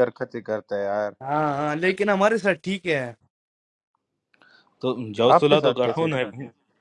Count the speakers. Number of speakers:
3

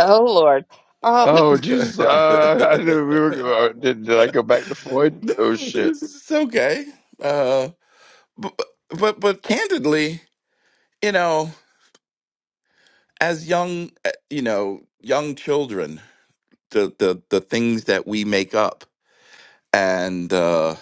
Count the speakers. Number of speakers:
3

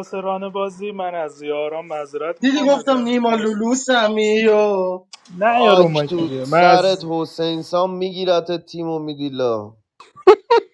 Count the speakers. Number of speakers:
3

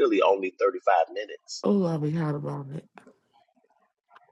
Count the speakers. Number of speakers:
2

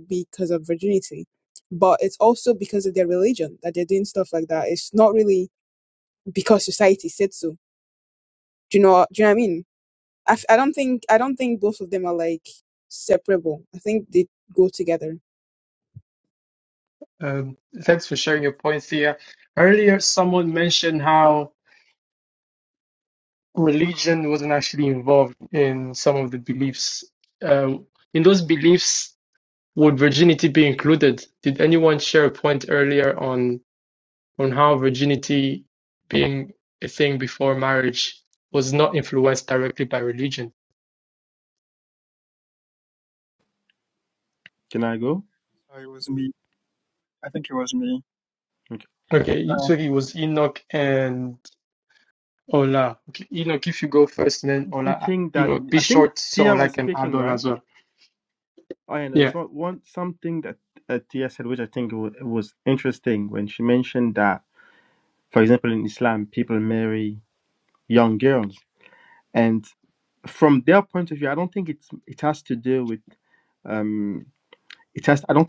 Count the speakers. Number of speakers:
4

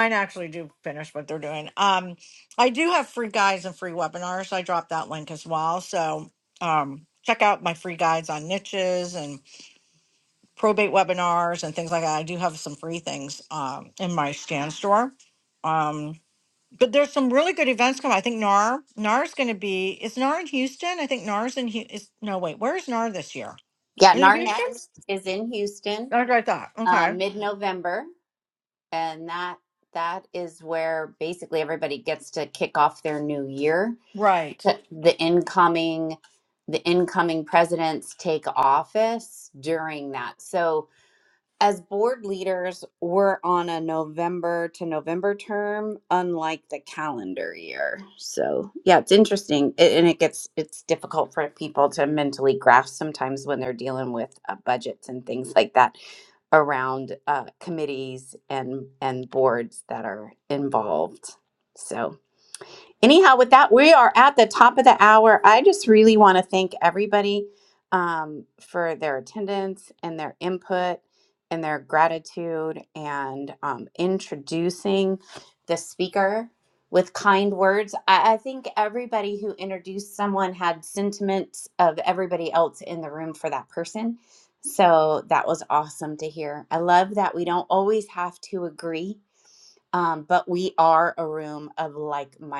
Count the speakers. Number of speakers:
2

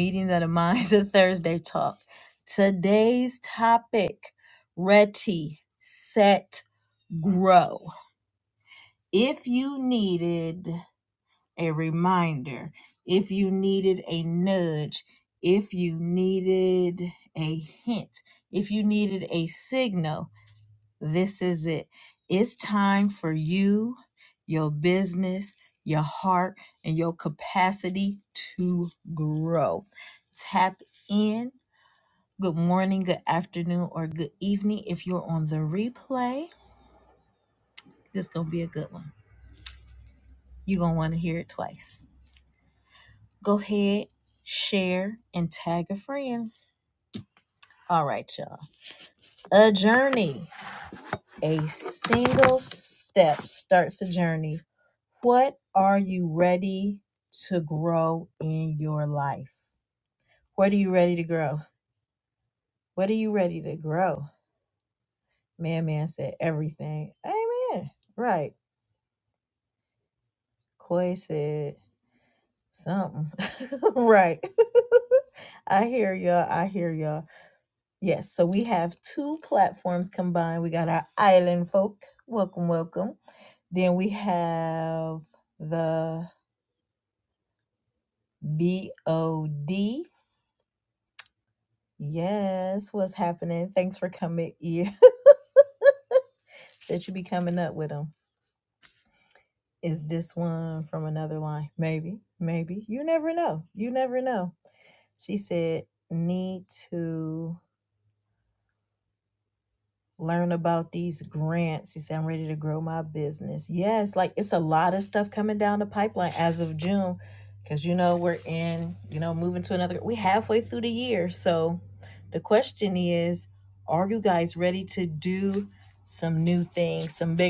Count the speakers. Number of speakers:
1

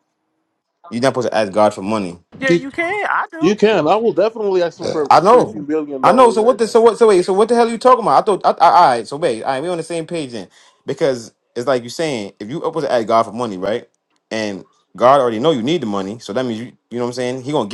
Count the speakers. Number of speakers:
3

